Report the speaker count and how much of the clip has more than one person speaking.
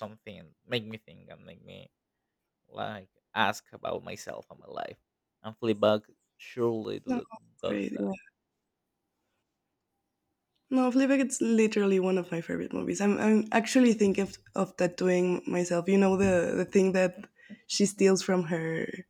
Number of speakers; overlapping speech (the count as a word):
two, about 2%